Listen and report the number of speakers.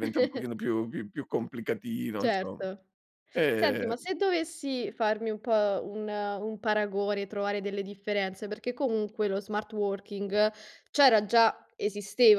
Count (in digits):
2